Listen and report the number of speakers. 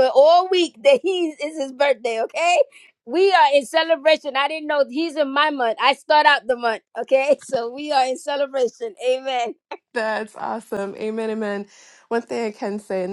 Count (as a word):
two